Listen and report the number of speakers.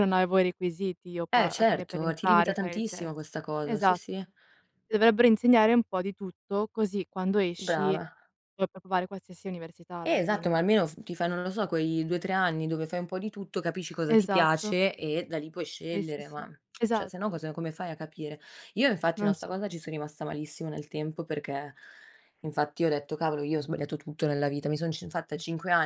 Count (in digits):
2